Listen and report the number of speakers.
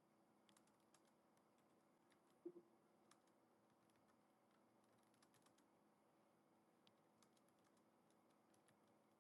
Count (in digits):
0